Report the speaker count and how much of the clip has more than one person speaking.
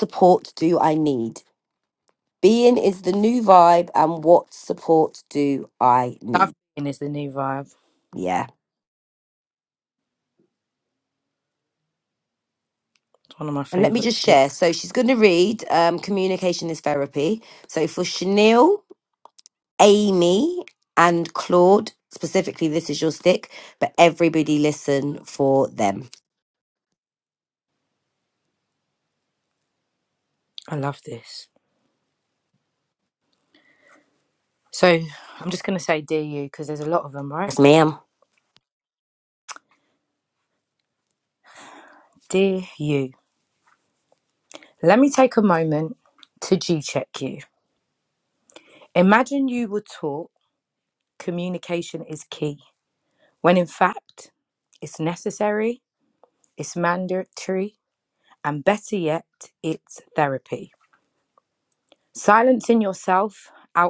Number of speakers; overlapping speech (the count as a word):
two, about 2%